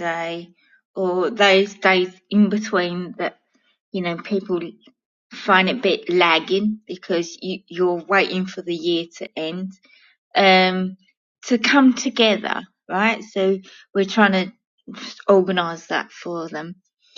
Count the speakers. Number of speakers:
one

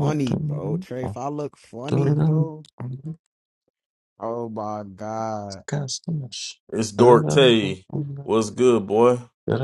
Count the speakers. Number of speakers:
three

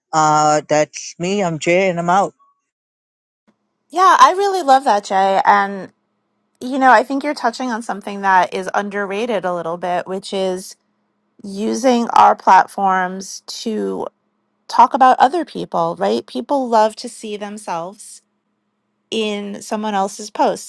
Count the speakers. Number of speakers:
two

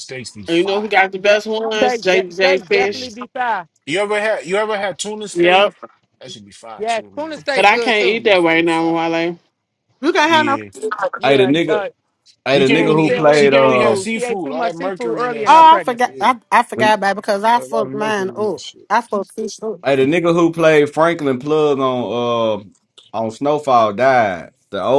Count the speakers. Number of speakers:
five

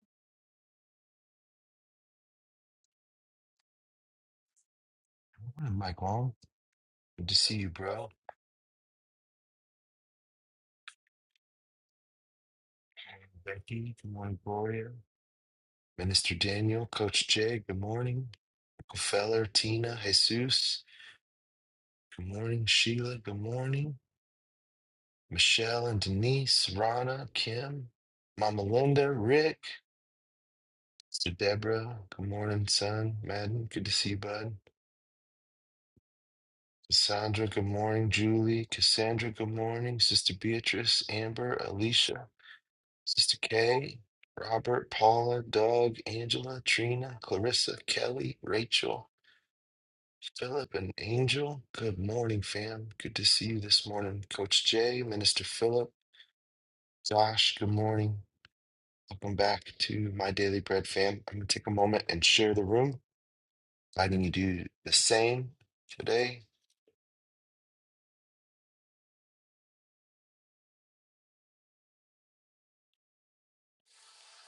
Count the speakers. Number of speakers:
one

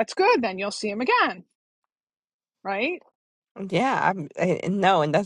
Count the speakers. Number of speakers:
two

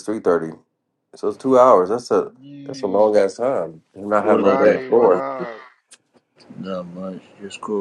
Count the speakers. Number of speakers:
three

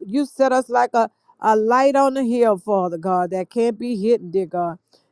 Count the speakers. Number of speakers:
one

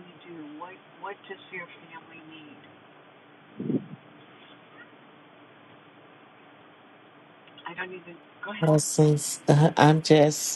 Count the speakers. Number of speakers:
two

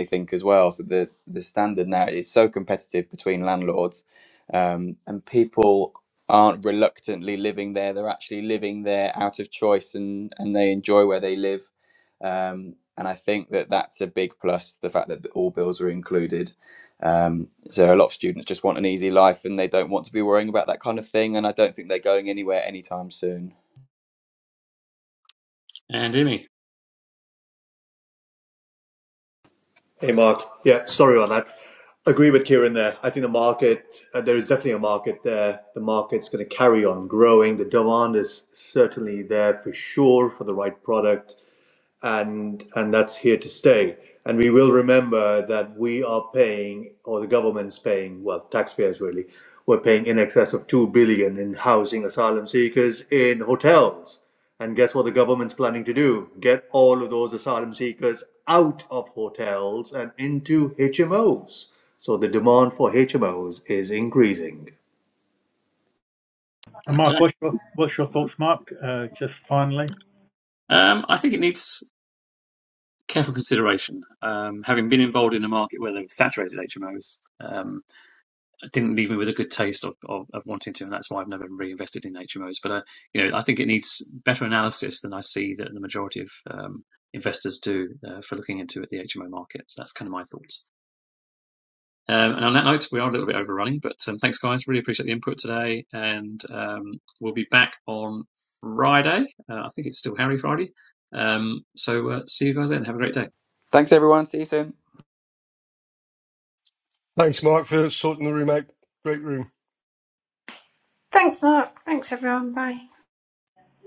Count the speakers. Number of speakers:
six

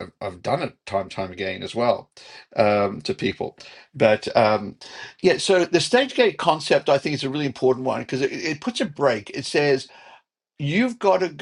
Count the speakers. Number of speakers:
one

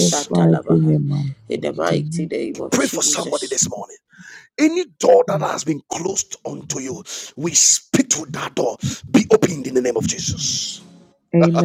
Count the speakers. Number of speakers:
three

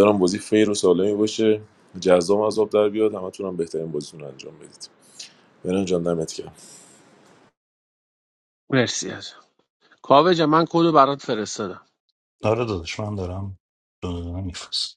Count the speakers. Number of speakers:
three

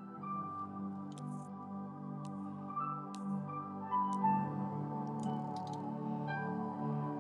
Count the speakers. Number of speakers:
zero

